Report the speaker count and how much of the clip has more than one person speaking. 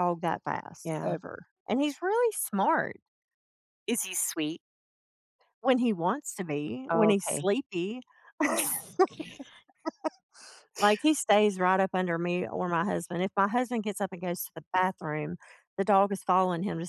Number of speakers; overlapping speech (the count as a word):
two, about 5%